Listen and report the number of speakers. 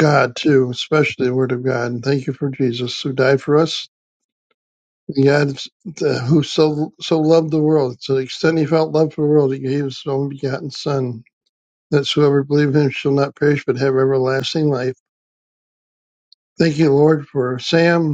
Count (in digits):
1